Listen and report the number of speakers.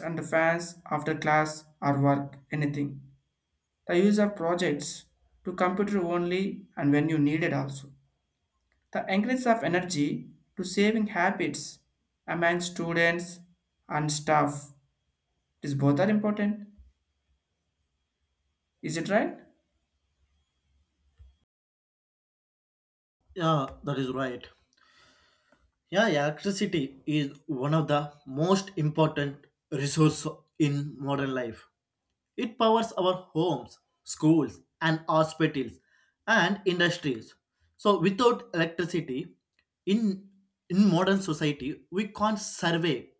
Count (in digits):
2